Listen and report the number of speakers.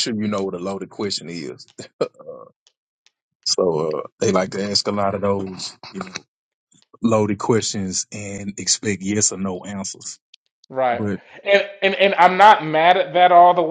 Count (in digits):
2